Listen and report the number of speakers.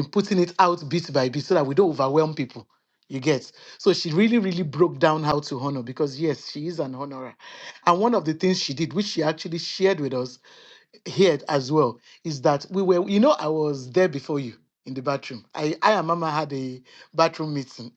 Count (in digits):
1